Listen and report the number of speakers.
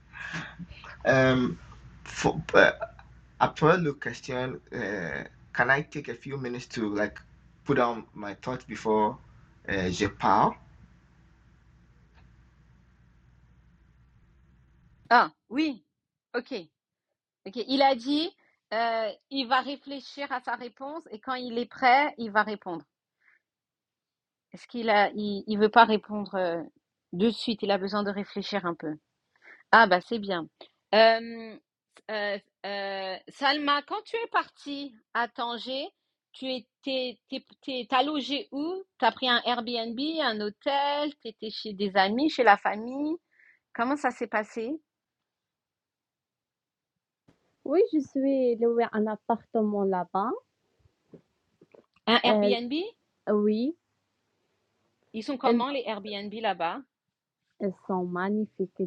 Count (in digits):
3